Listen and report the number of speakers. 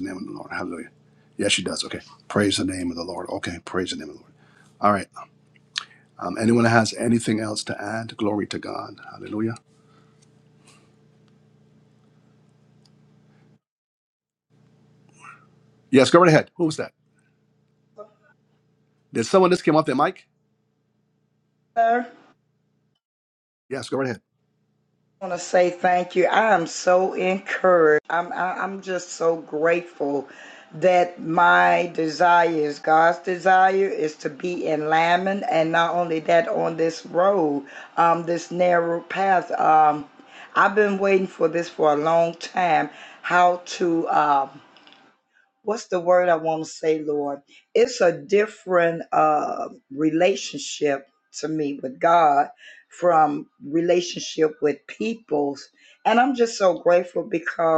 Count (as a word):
two